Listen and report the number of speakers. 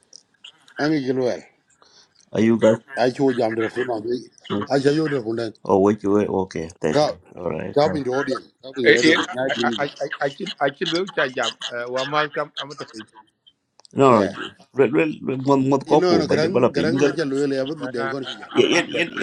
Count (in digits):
3